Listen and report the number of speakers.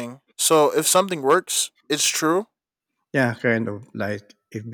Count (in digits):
2